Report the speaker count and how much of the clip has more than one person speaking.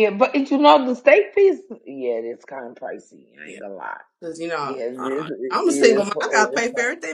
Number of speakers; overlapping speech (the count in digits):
2, about 28%